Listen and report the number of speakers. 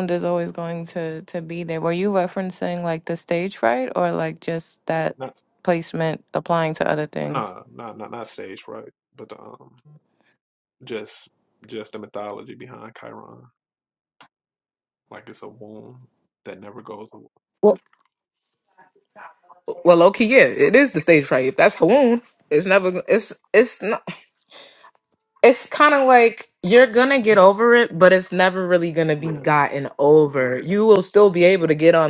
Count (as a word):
three